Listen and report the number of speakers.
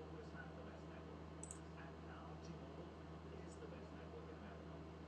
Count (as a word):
zero